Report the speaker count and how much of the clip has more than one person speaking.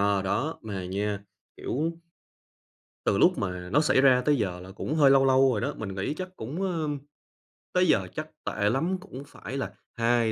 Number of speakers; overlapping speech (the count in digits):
1, no overlap